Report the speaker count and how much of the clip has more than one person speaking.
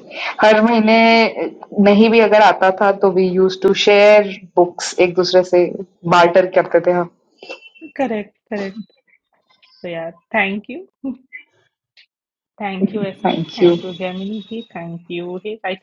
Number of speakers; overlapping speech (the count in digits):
2, about 4%